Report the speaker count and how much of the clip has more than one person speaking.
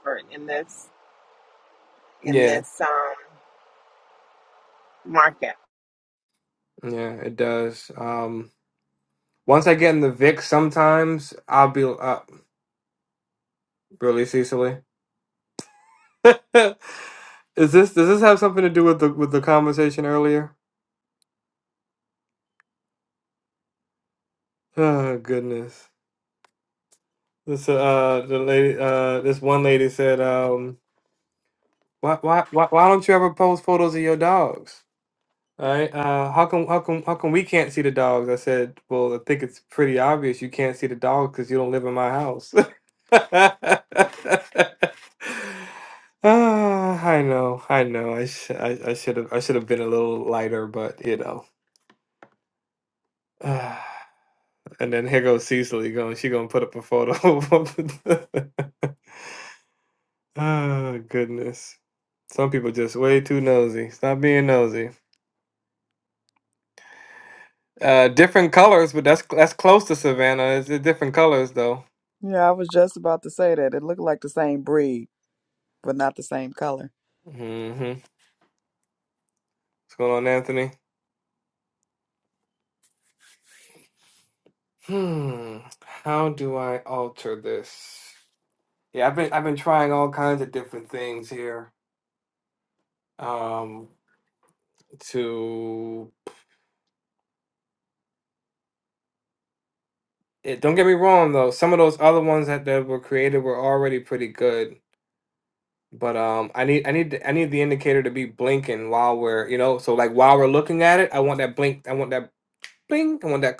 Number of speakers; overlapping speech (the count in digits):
3, under 1%